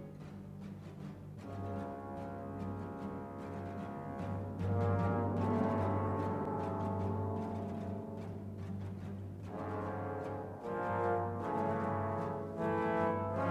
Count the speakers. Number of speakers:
0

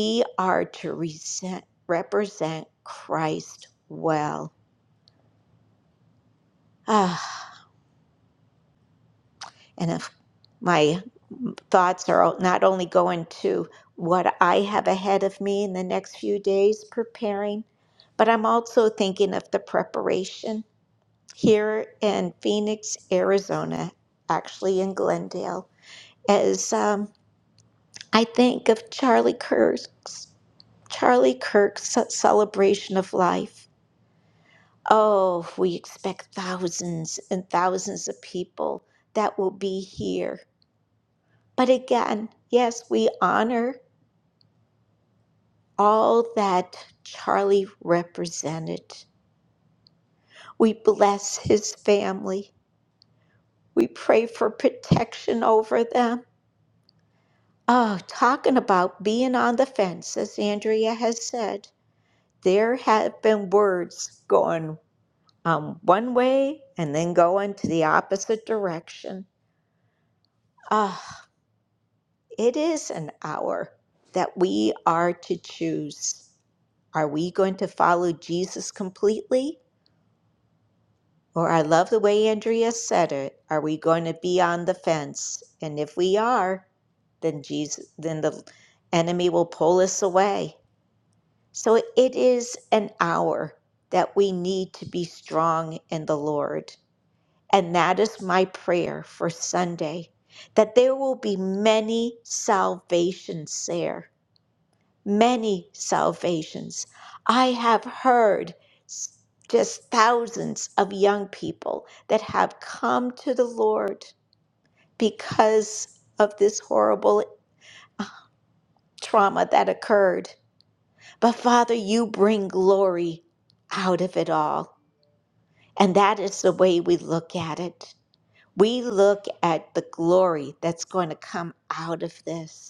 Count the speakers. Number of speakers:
1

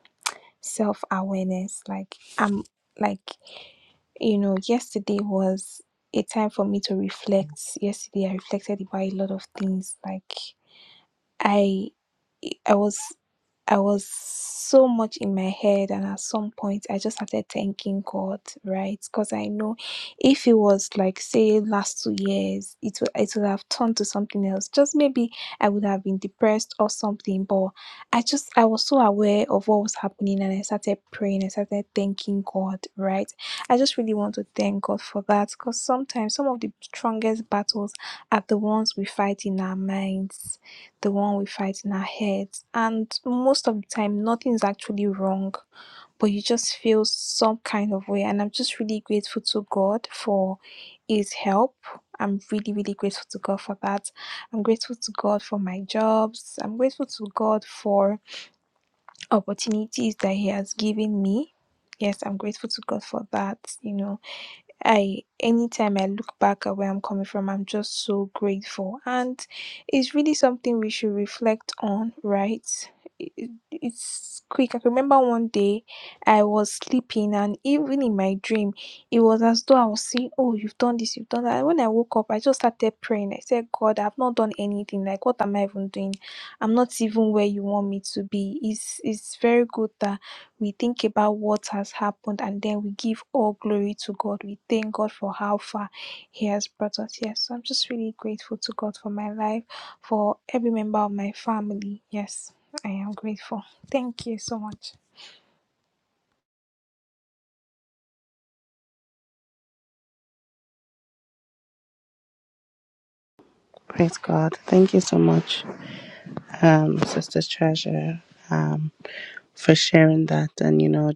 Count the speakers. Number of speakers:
2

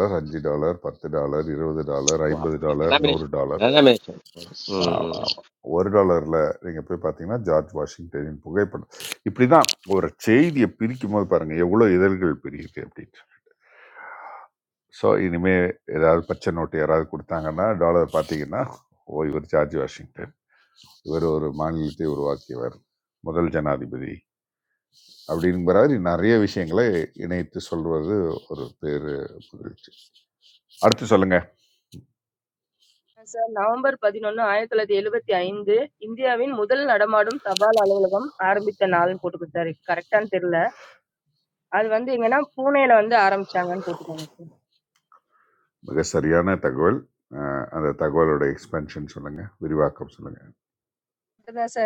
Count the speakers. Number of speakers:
3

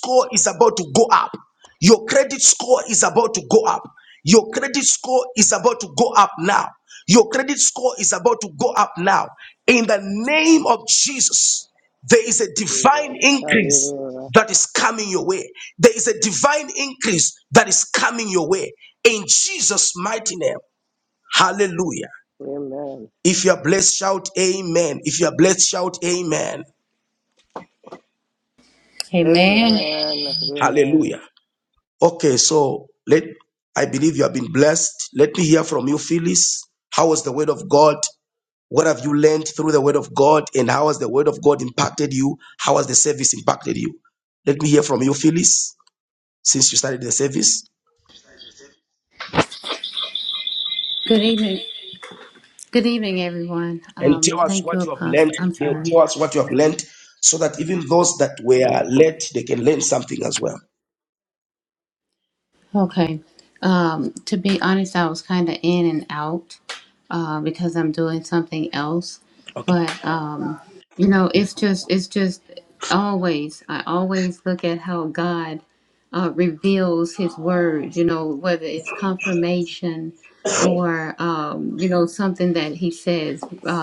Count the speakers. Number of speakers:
3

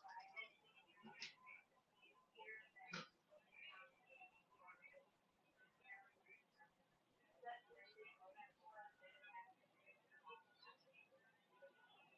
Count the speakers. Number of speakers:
0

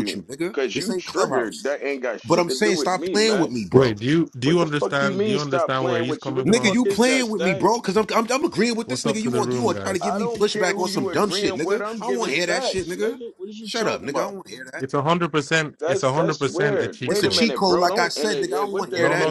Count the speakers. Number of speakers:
3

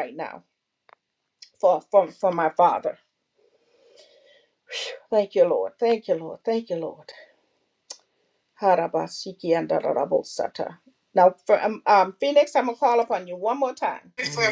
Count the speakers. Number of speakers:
1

